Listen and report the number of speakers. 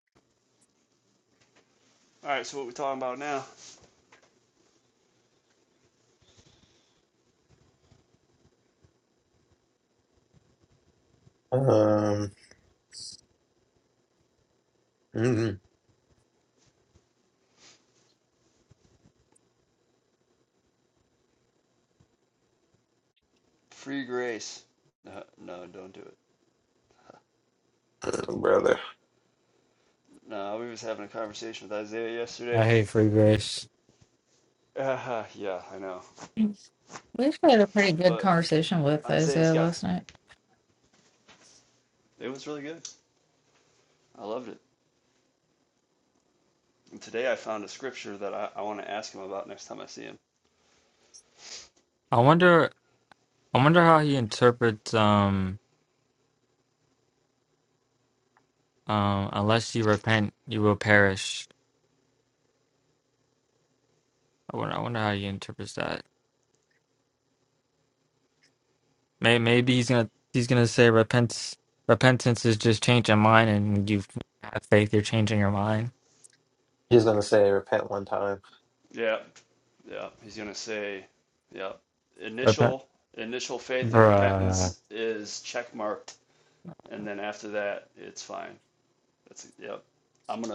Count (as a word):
four